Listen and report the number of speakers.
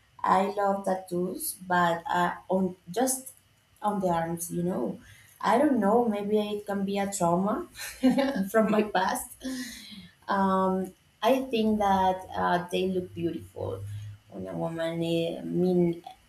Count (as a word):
one